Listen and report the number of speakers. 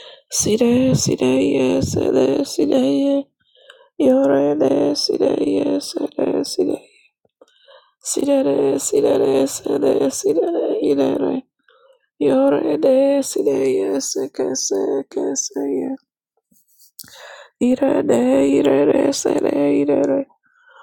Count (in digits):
1